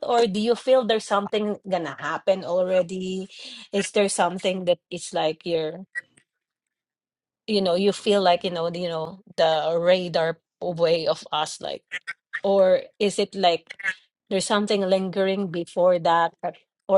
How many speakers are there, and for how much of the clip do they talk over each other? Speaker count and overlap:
1, no overlap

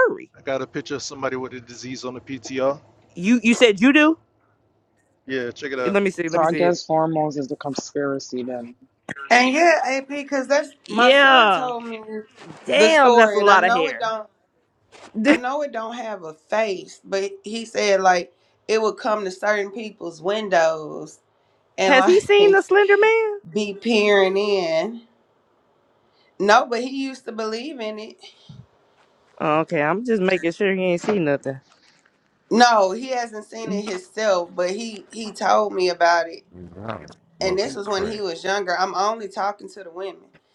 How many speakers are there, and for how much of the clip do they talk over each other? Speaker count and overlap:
5, about 10%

